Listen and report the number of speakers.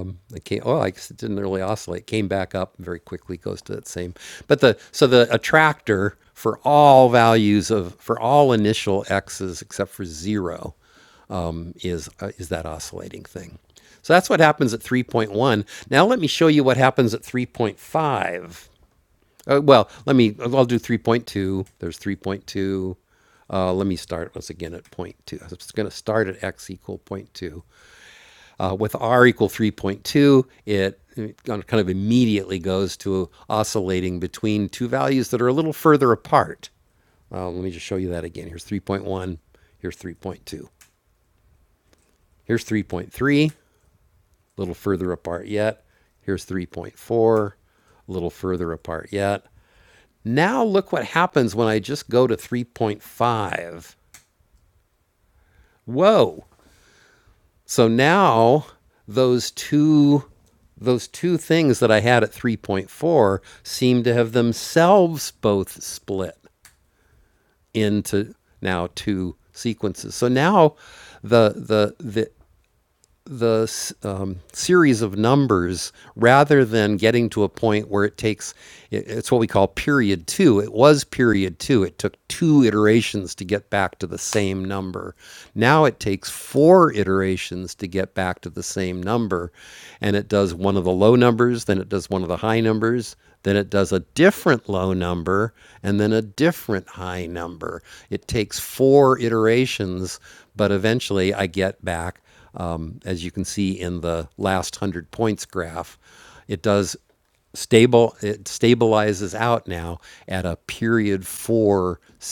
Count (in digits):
1